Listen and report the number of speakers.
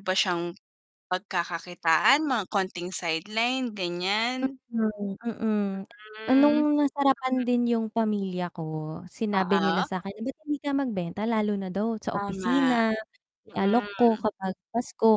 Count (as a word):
two